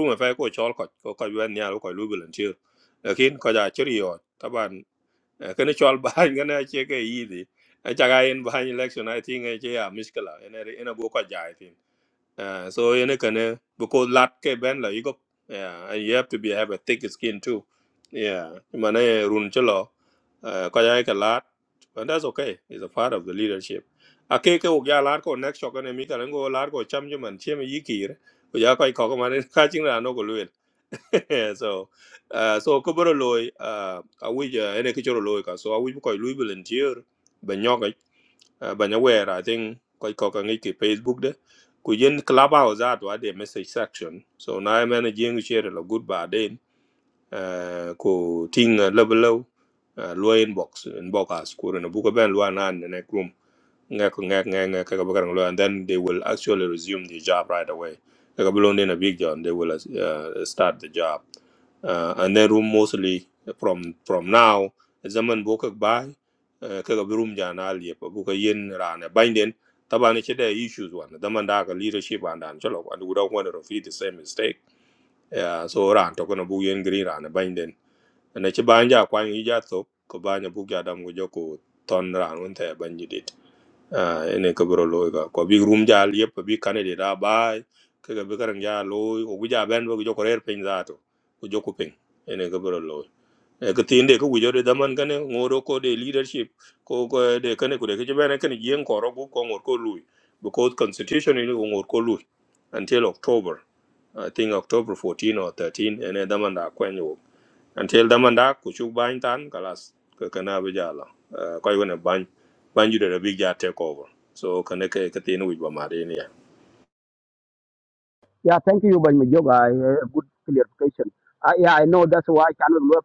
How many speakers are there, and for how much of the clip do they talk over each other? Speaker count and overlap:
2, no overlap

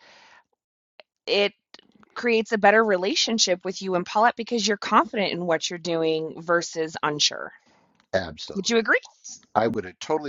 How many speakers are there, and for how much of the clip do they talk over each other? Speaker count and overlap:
2, about 3%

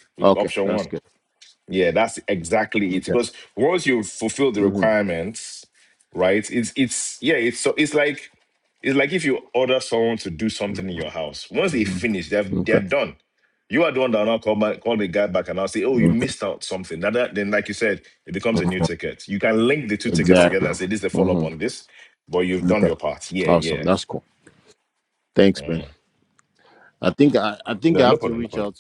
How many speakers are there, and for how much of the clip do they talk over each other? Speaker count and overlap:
2, about 17%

